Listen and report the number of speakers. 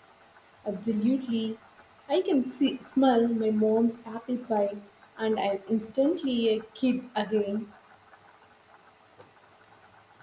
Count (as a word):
one